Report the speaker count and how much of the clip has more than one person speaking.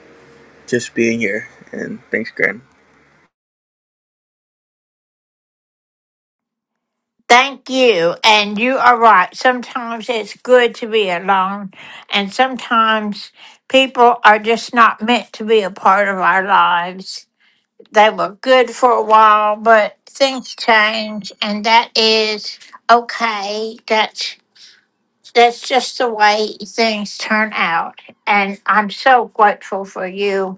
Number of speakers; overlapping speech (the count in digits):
2, no overlap